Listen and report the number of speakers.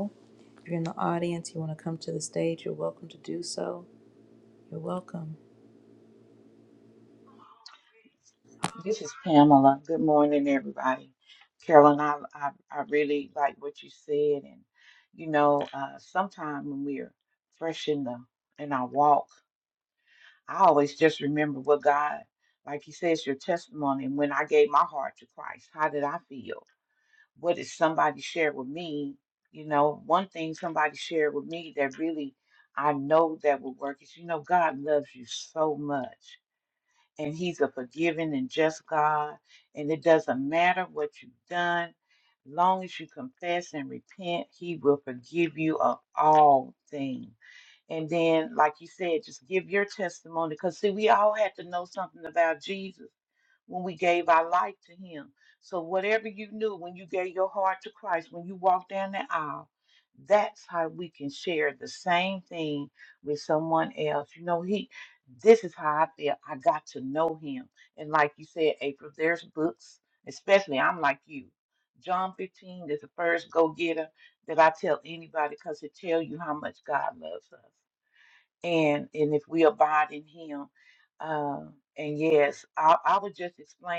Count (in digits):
2